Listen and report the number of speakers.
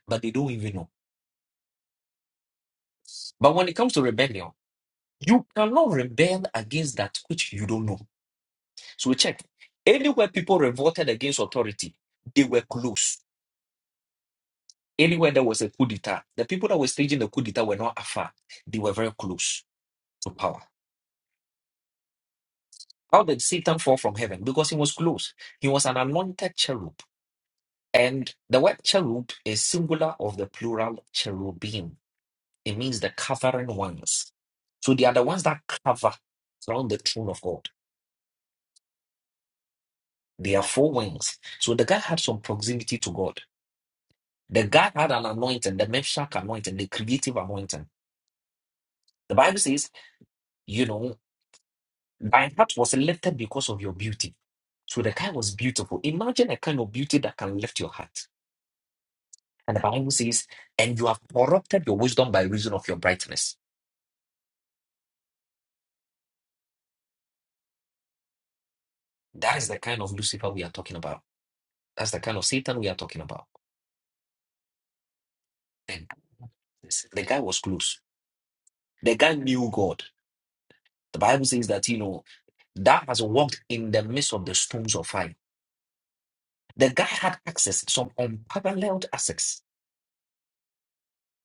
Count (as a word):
one